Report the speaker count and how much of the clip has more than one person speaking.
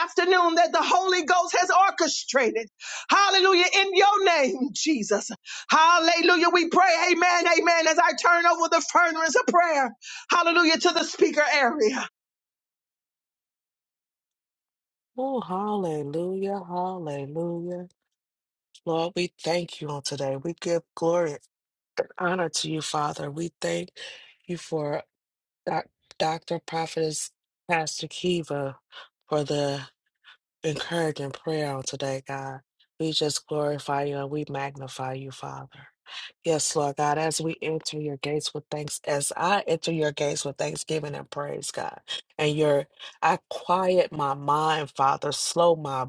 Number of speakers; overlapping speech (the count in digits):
2, no overlap